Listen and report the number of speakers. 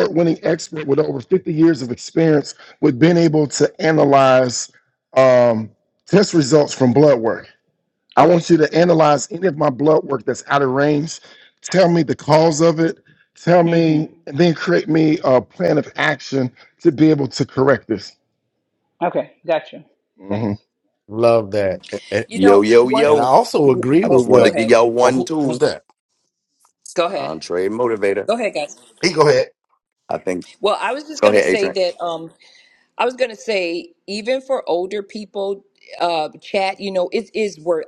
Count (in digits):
5